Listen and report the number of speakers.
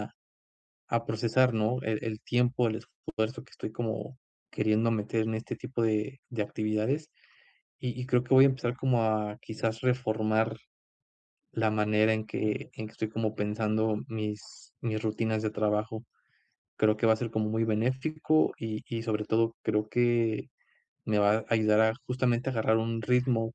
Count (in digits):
1